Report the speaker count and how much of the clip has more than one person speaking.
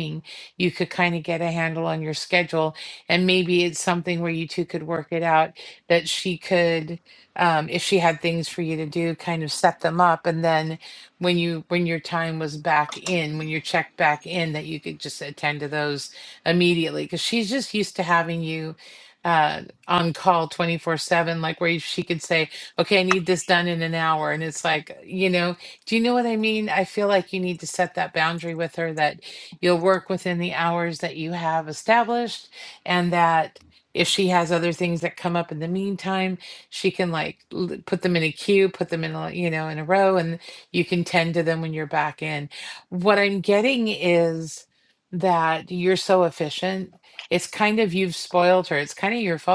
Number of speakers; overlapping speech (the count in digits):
1, no overlap